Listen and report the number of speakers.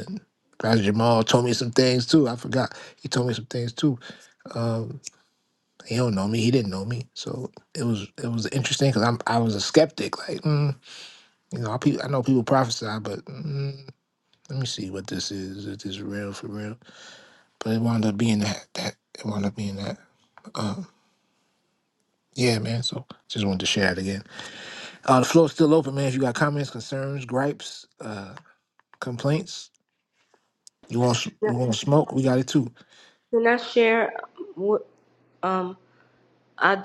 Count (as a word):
two